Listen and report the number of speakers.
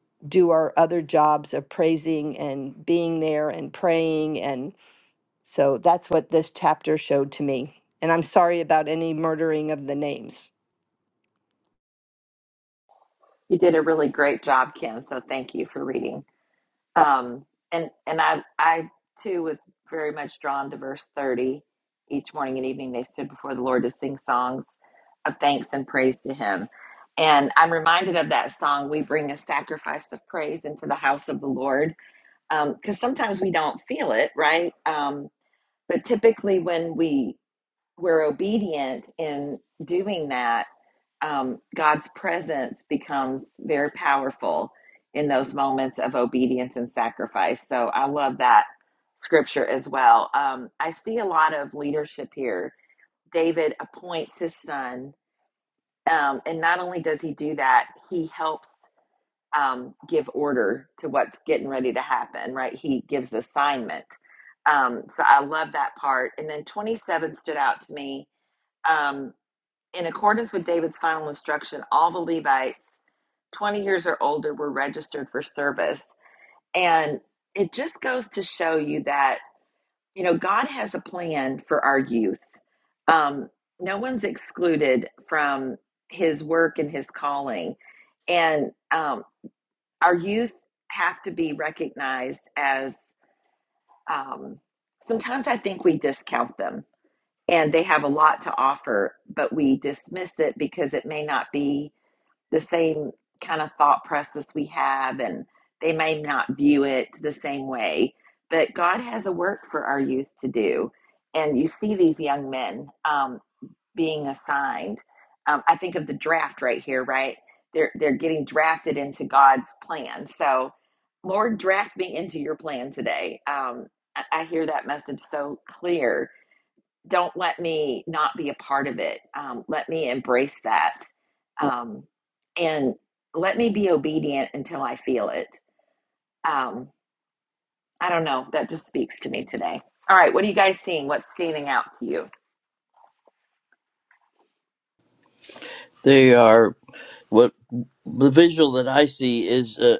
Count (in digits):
3